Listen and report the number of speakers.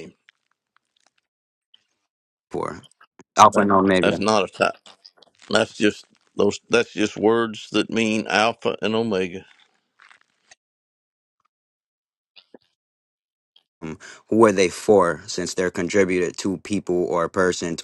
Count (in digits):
2